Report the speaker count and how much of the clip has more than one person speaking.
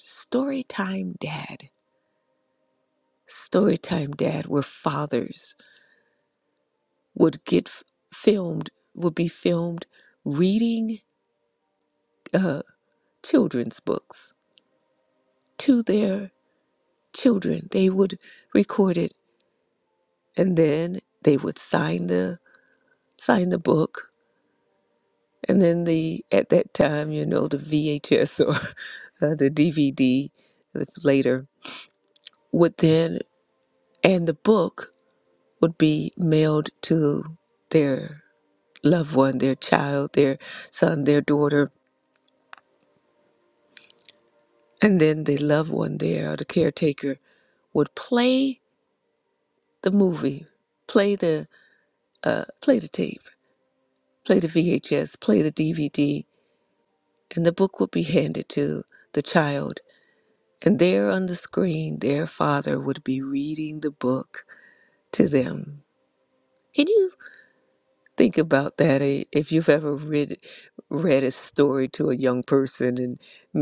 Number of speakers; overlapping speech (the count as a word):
one, no overlap